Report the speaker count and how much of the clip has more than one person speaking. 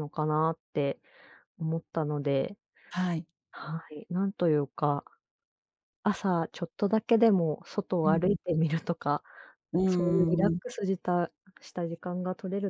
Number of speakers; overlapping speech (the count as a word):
two, about 8%